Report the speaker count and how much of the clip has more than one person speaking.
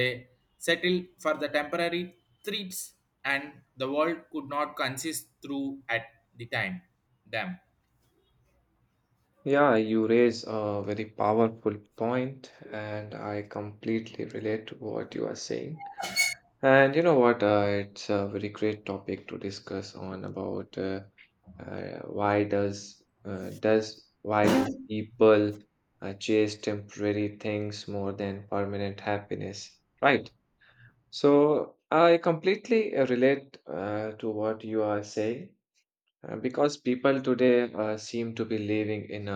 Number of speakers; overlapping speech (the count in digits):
2, no overlap